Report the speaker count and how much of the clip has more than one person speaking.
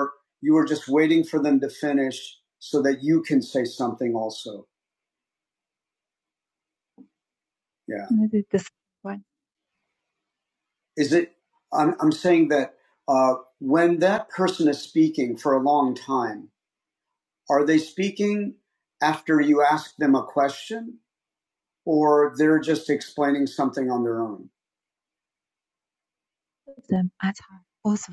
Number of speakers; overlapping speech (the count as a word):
two, no overlap